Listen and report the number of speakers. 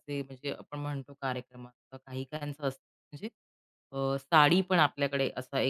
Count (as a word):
one